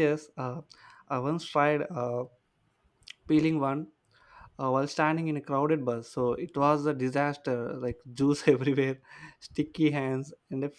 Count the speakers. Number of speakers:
1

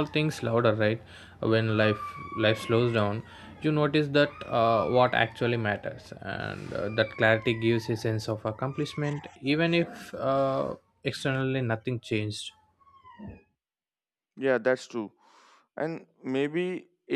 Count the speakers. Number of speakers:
2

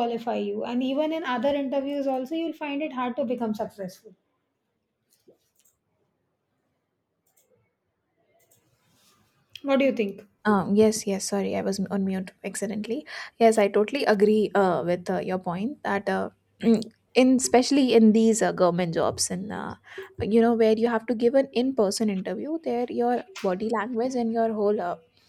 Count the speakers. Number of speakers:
2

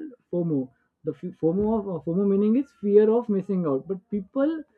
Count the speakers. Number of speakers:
1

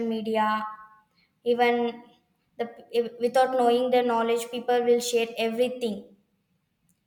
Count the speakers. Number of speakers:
1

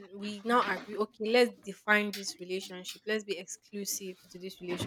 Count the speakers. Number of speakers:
1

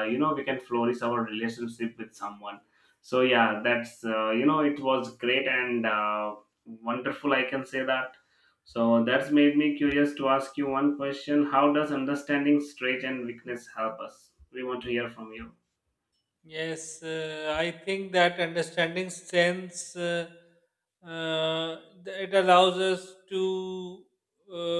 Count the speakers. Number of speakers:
2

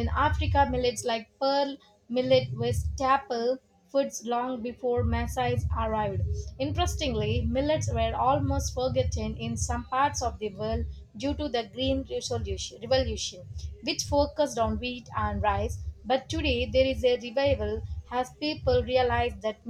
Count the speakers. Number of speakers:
1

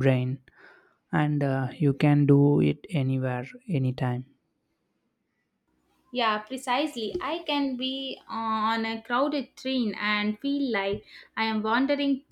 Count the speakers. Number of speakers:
2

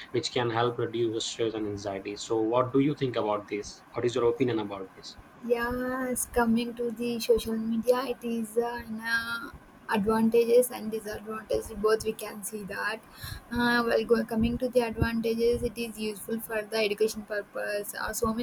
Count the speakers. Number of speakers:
2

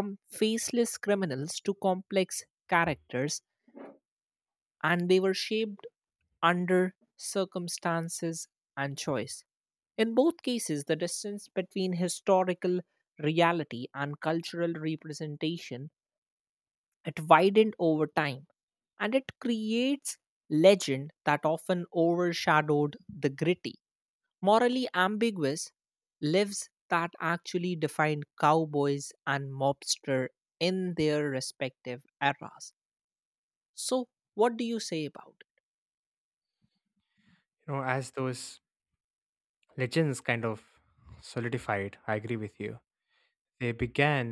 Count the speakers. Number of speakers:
2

